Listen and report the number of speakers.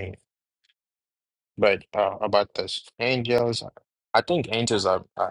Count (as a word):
one